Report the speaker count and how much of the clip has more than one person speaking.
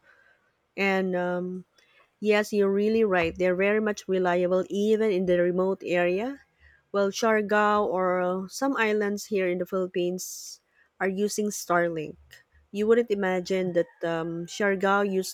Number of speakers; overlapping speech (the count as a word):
one, no overlap